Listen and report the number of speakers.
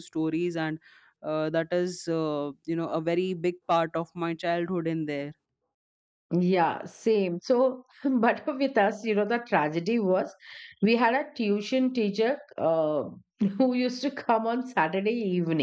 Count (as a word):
two